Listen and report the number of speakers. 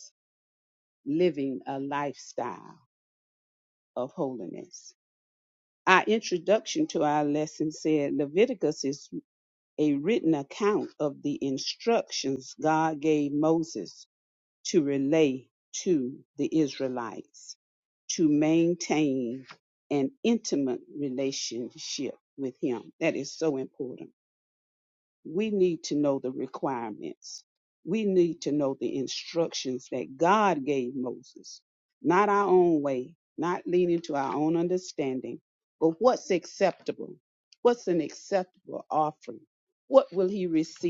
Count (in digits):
1